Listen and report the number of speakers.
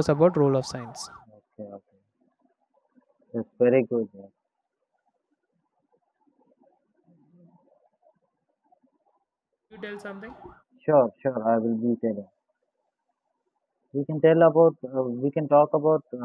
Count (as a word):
two